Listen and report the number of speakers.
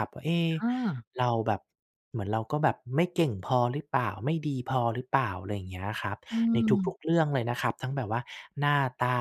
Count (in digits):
2